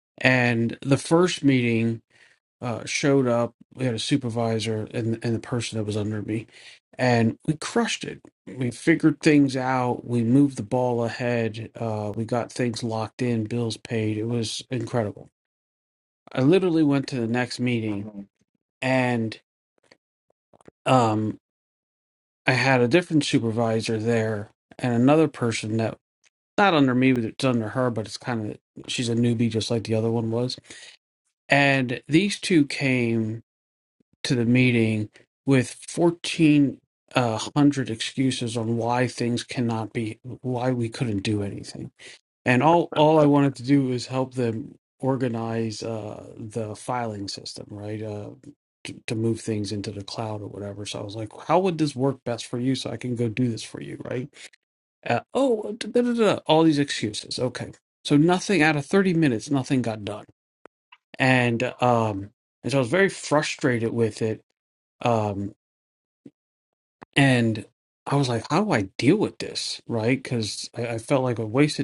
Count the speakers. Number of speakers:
one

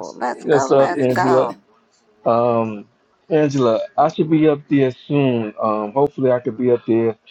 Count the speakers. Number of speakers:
two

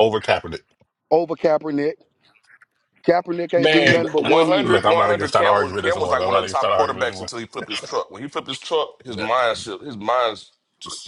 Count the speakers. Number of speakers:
three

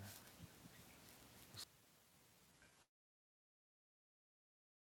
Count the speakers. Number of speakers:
zero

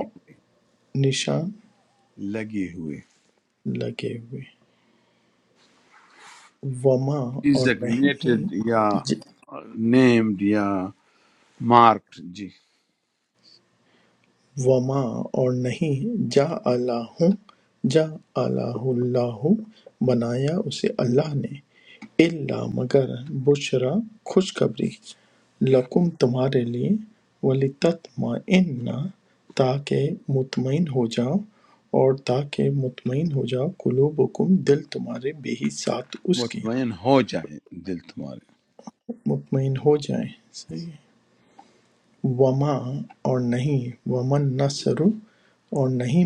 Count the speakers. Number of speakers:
two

